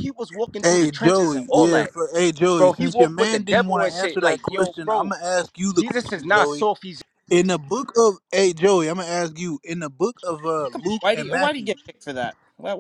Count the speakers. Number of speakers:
three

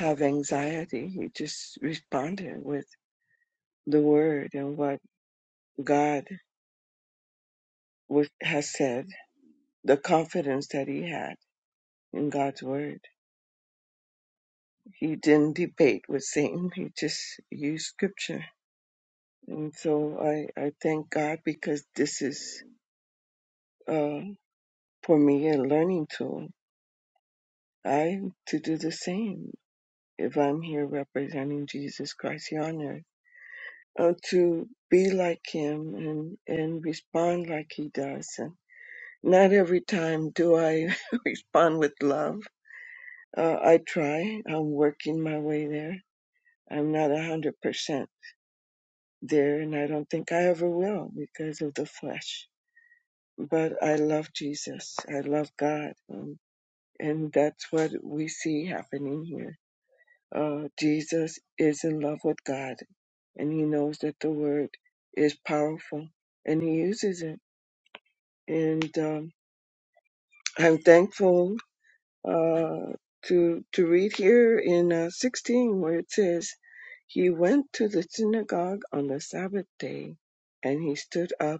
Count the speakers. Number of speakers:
one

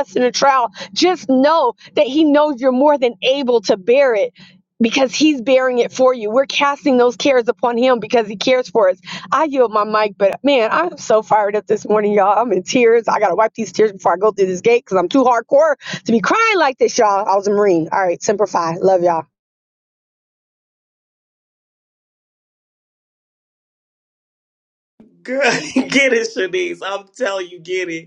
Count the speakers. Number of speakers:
two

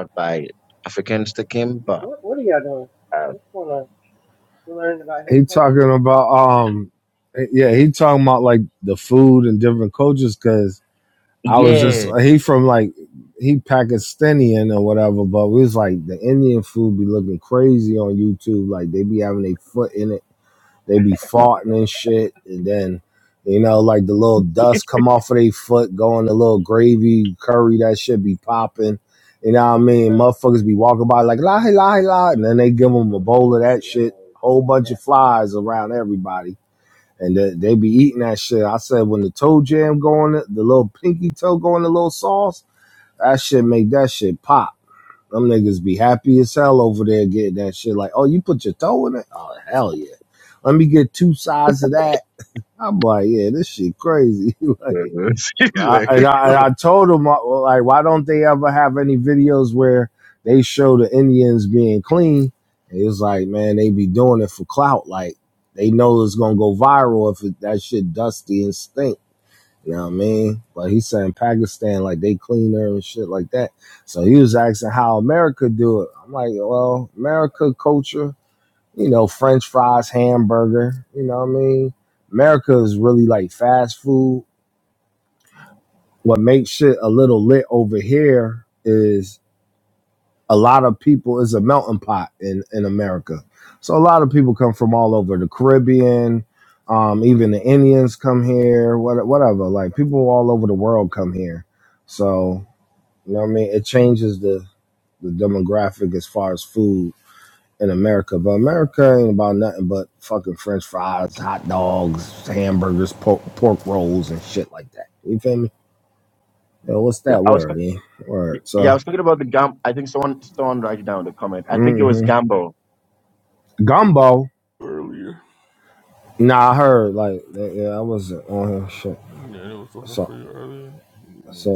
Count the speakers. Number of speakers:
four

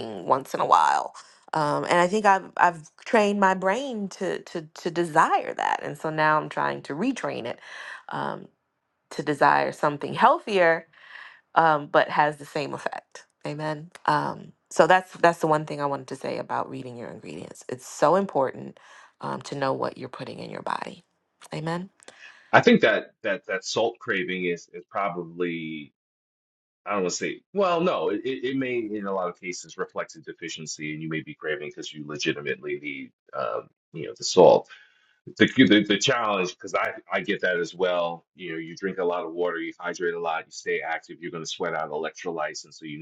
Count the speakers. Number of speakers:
two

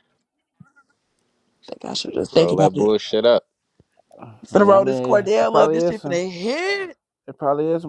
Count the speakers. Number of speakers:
three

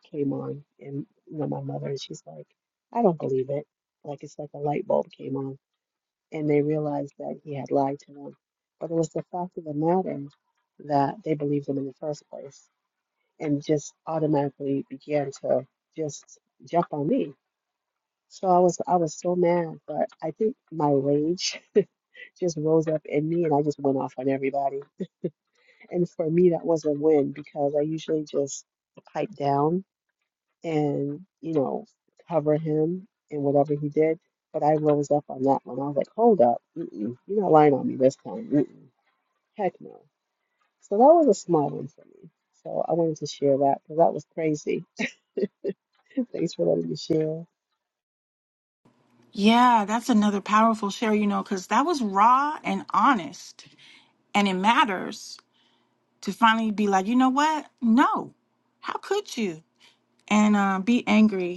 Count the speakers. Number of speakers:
two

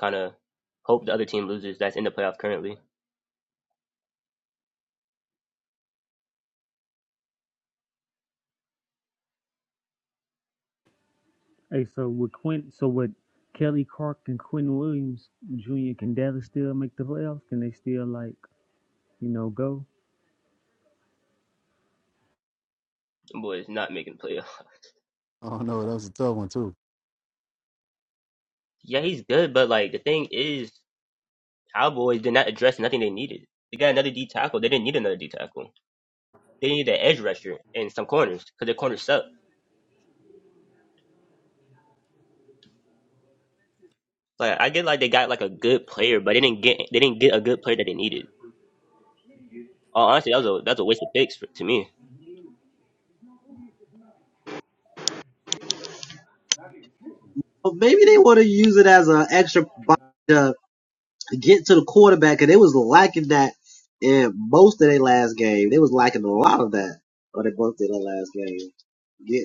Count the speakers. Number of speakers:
four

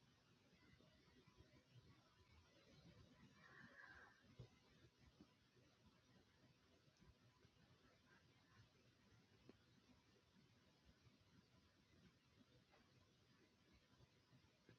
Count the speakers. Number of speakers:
zero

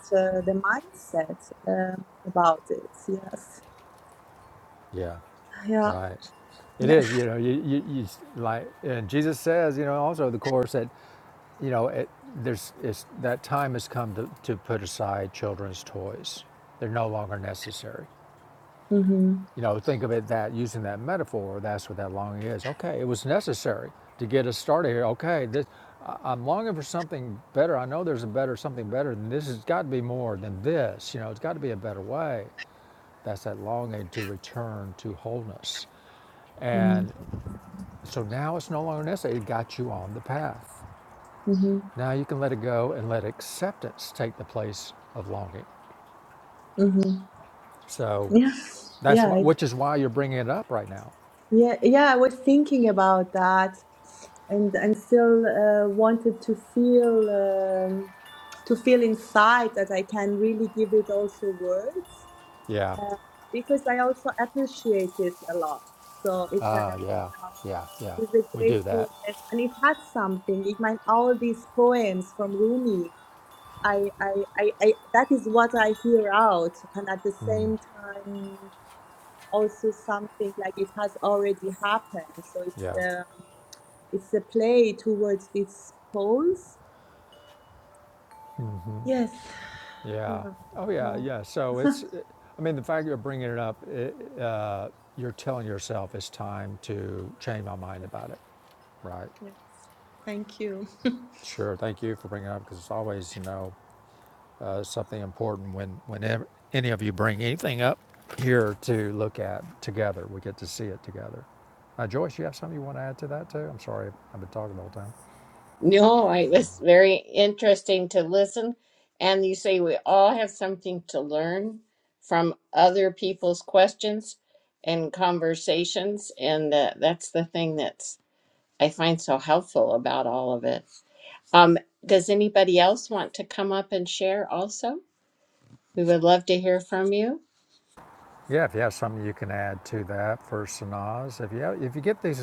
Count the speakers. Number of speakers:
three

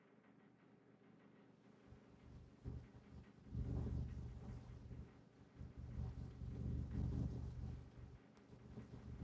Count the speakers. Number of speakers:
zero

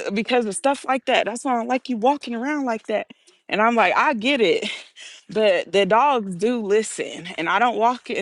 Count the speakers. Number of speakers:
one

